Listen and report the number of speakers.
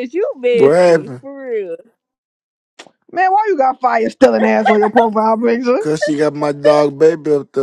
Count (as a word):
three